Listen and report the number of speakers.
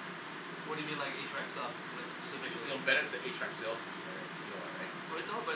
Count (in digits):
2